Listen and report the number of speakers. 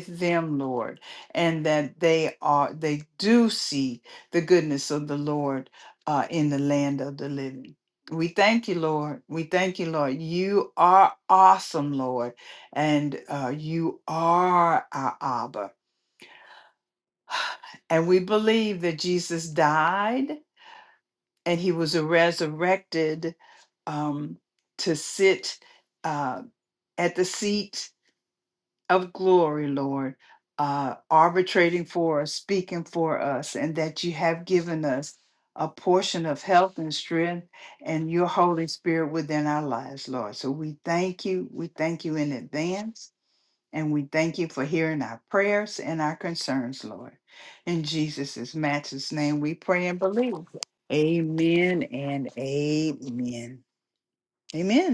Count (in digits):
1